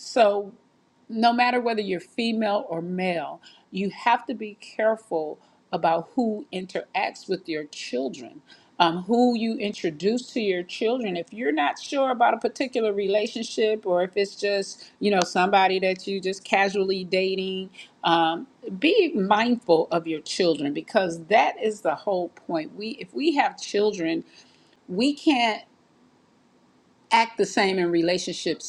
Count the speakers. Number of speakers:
one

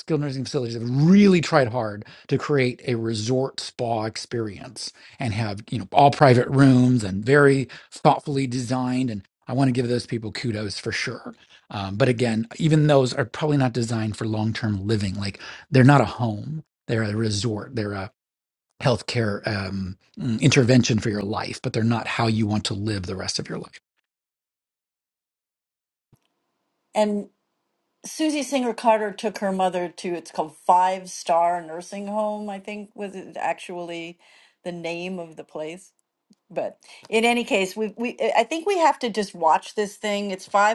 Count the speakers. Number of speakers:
two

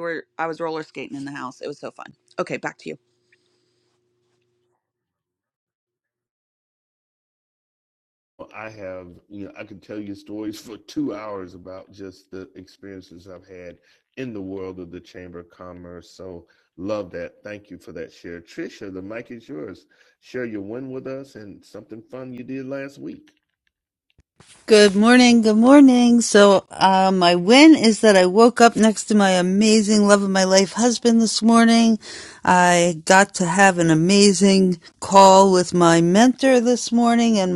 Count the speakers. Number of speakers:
three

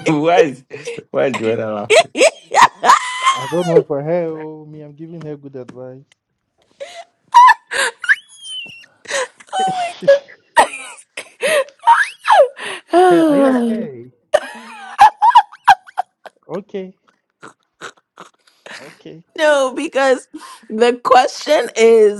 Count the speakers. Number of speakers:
three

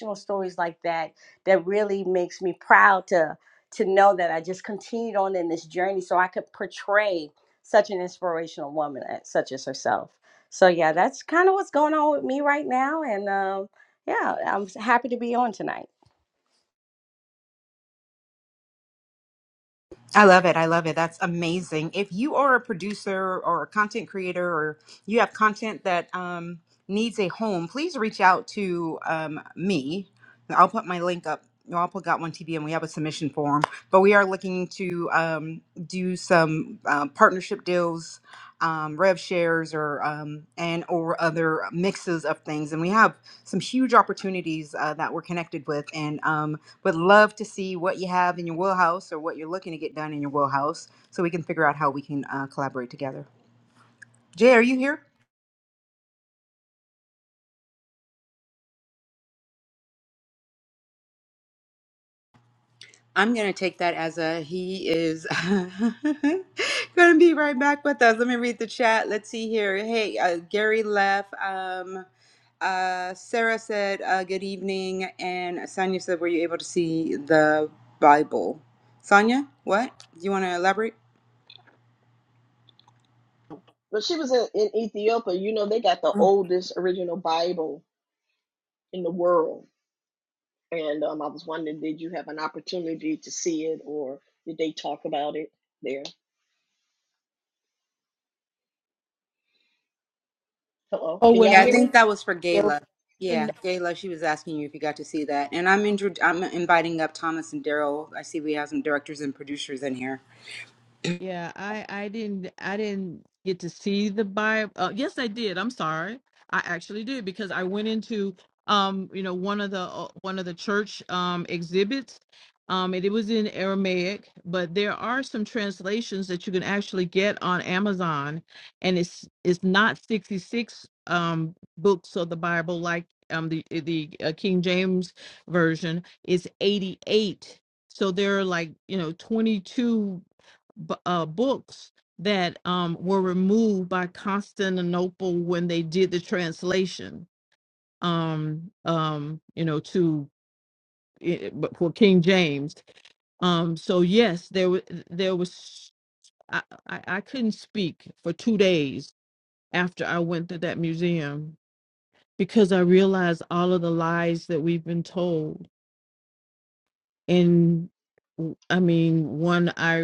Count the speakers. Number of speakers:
four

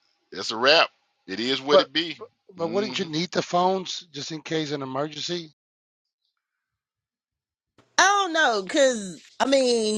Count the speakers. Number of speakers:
three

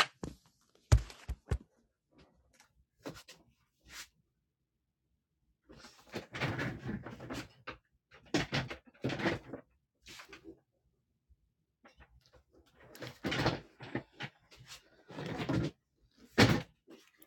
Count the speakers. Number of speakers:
zero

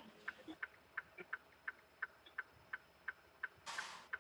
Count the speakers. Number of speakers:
zero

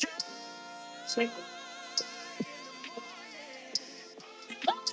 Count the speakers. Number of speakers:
zero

